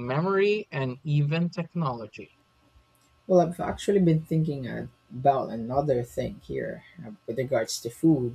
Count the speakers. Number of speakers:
2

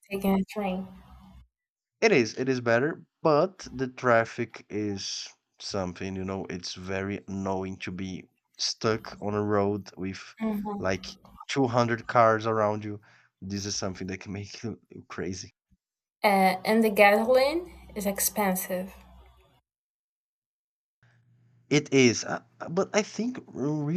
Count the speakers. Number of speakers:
2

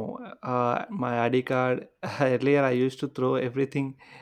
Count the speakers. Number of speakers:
1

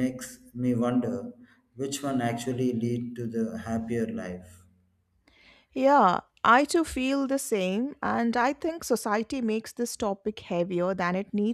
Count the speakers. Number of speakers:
2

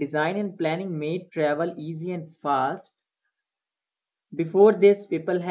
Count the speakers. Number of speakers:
1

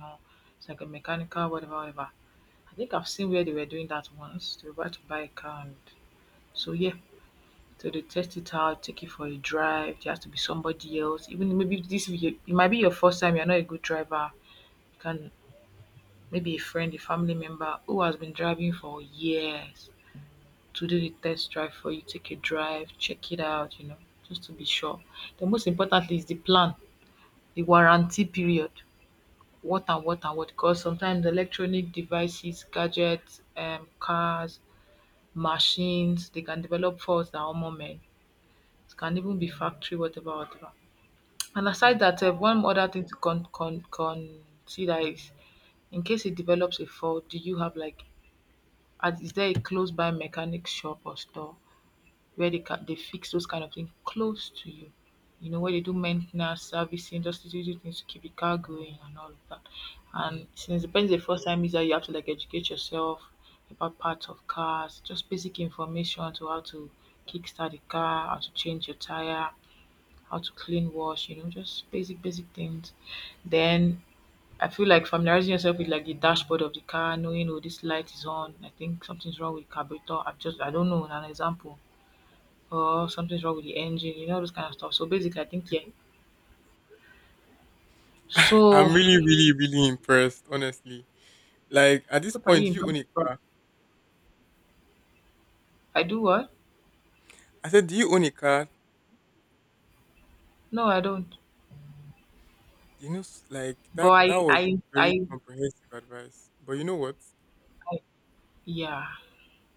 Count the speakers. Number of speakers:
2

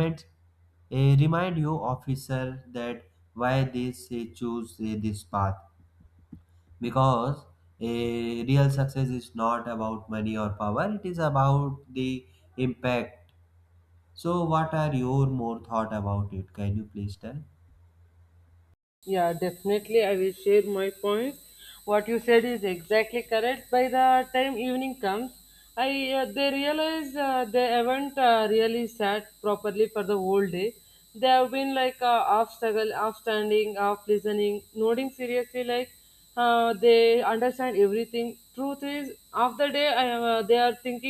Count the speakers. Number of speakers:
2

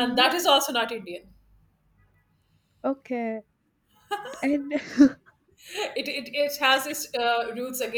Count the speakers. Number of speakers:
2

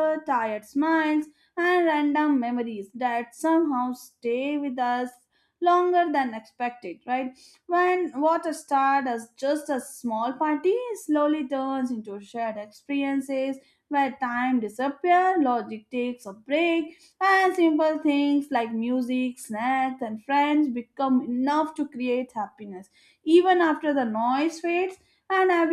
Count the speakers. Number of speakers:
1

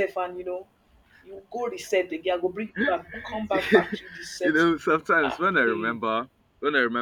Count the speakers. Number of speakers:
2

